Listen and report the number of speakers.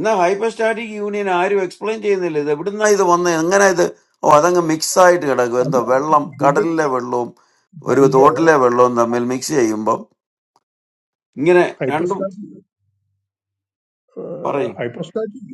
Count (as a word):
two